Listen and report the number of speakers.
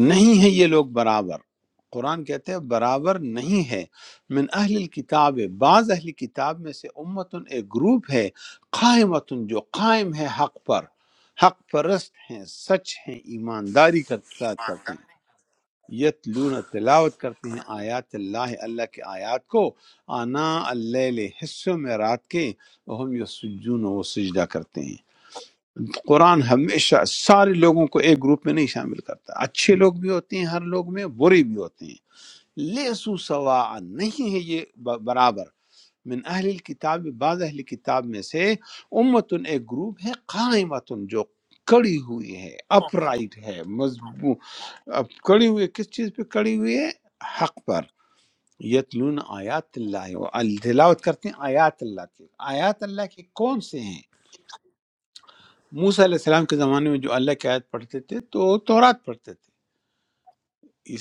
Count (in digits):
1